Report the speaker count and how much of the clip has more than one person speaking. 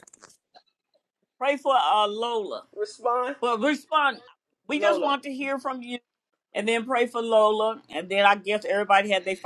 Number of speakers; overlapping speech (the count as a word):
two, about 5%